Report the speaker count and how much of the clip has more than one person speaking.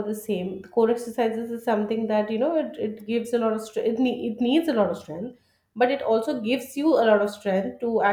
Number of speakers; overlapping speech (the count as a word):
one, no overlap